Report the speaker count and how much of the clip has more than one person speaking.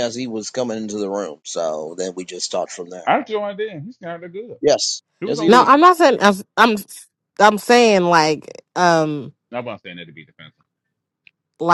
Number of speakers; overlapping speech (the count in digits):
3, about 5%